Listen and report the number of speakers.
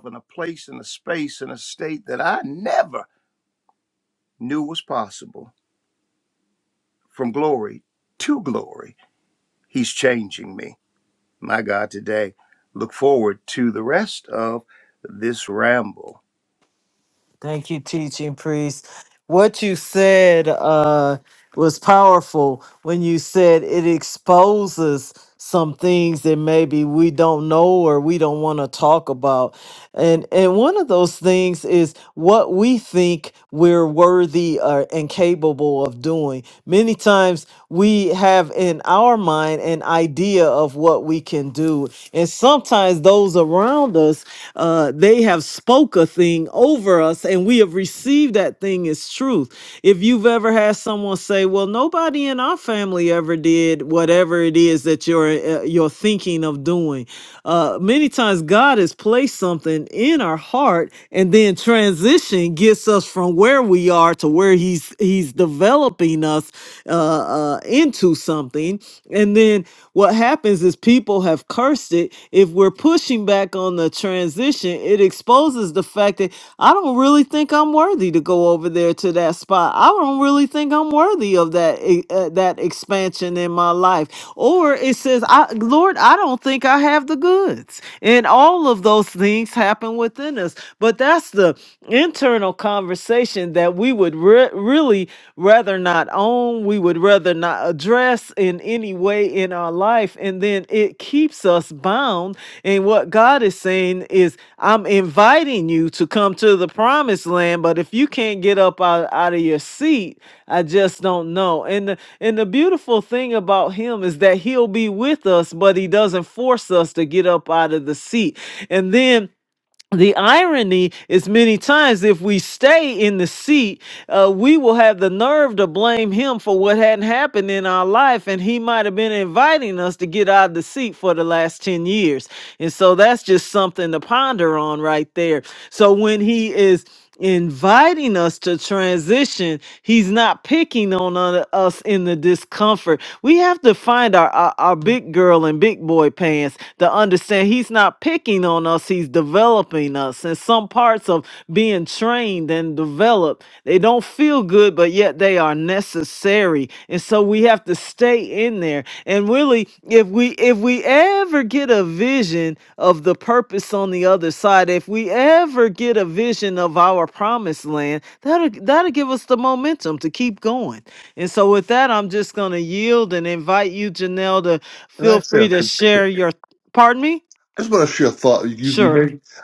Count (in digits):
3